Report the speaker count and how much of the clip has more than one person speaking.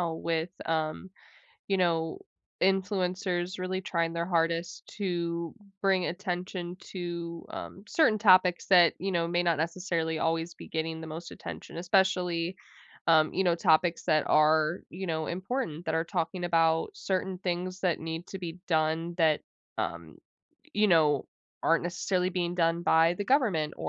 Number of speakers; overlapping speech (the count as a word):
one, no overlap